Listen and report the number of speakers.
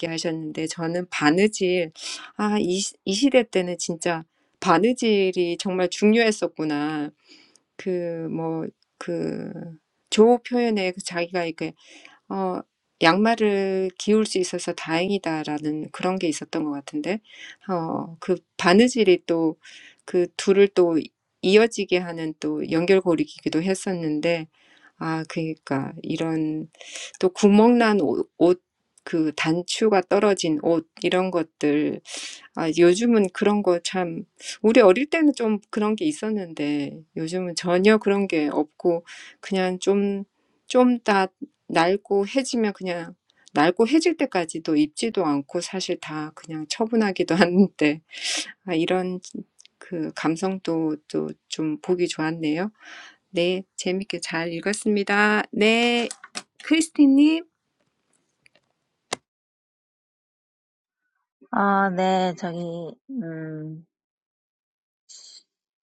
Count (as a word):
two